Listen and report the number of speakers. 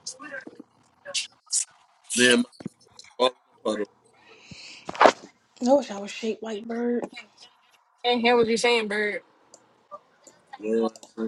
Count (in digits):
3